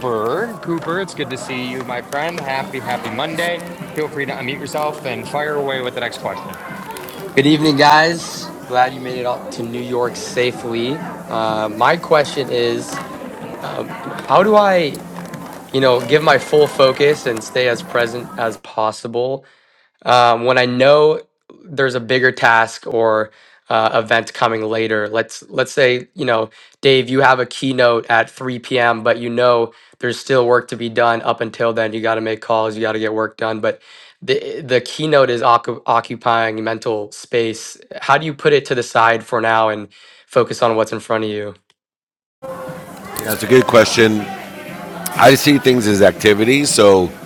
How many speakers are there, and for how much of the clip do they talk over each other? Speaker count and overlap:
3, no overlap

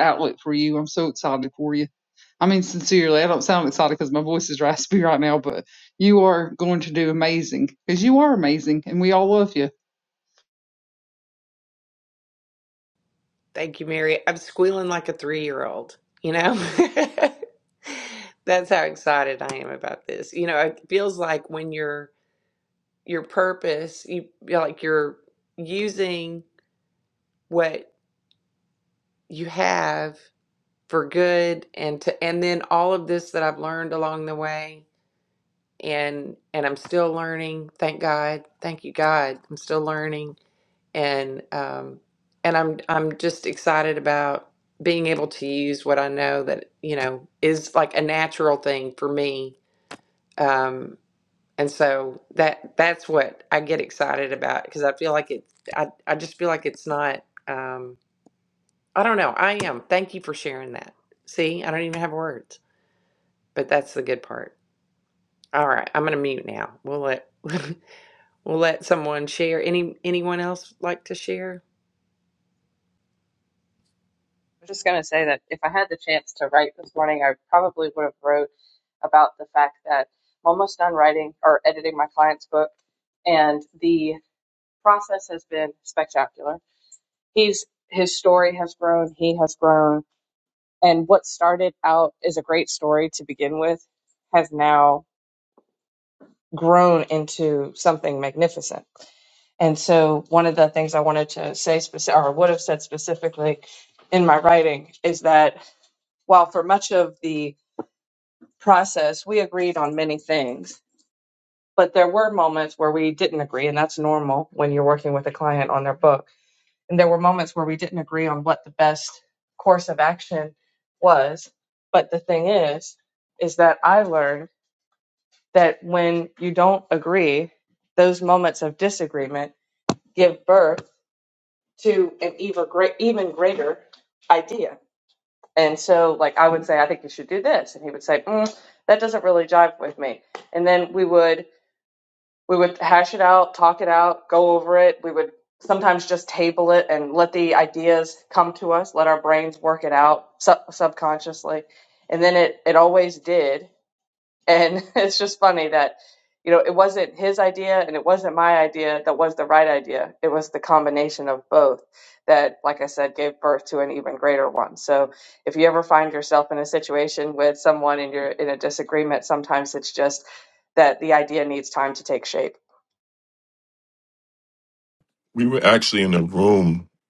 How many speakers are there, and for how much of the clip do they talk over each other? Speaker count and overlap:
4, no overlap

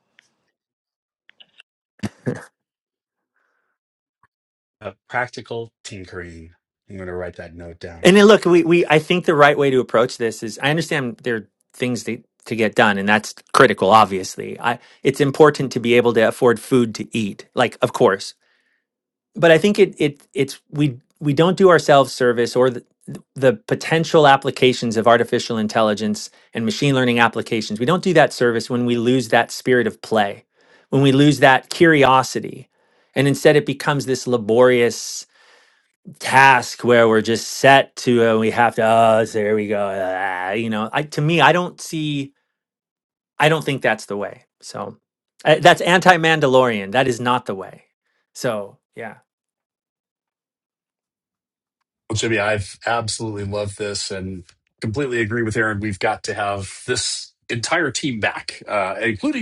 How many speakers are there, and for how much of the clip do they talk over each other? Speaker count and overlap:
3, under 1%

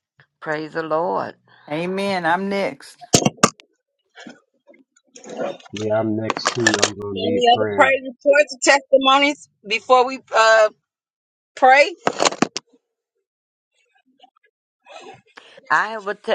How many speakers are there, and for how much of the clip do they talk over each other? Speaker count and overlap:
4, about 5%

